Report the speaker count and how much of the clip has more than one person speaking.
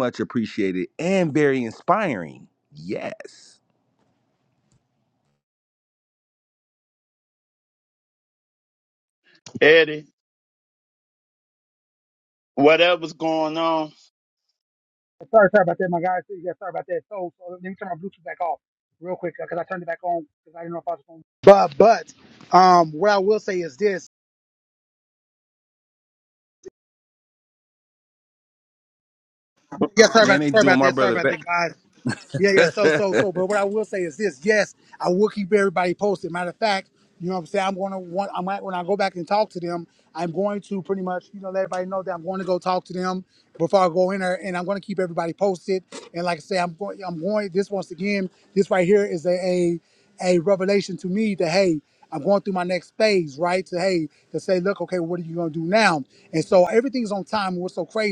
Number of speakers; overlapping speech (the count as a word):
three, about 2%